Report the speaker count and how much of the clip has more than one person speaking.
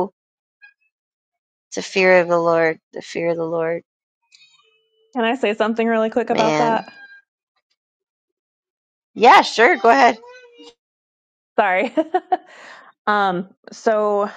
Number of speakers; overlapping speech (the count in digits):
2, about 3%